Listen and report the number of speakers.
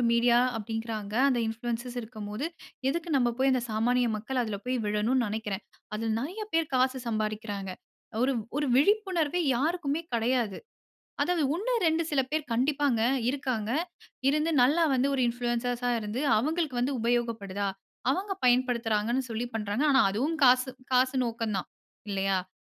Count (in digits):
1